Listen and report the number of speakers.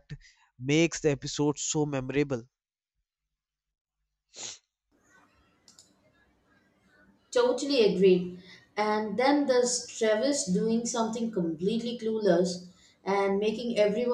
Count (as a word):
two